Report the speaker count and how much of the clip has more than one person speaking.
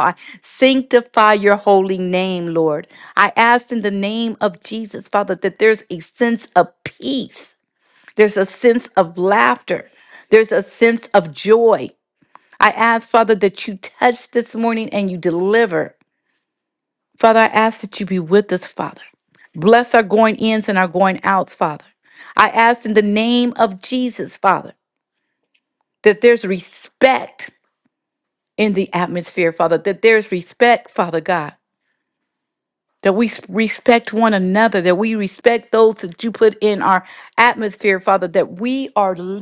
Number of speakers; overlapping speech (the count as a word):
one, no overlap